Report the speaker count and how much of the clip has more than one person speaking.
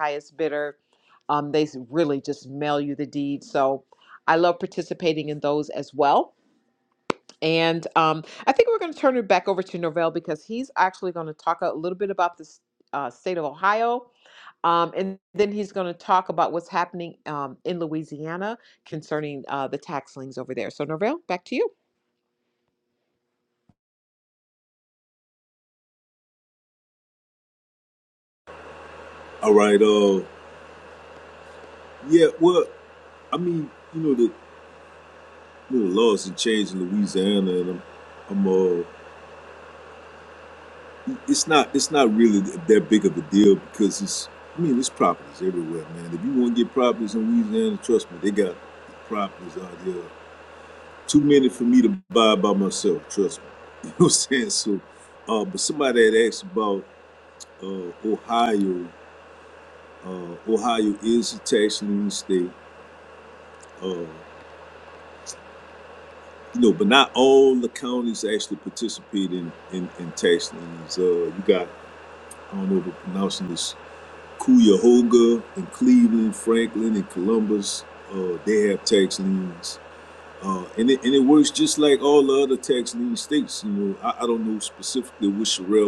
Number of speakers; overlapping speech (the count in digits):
2, no overlap